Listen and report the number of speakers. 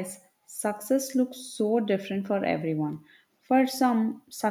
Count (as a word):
one